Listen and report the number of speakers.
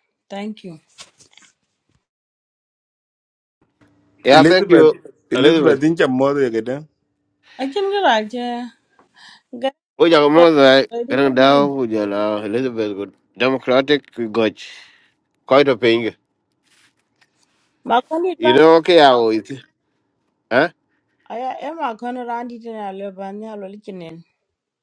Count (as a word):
three